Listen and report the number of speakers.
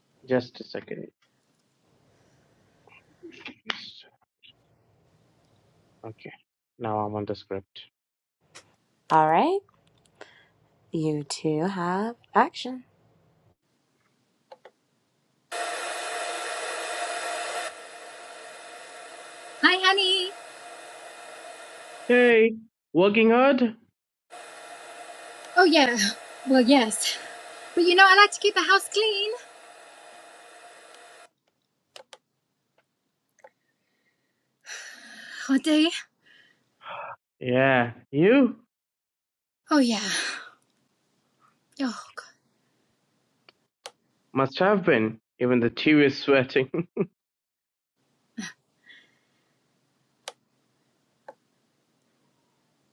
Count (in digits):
3